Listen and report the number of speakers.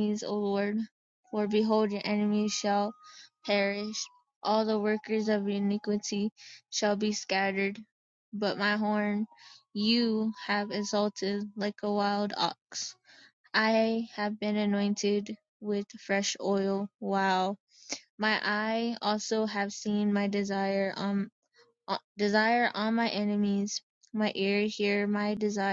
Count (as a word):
one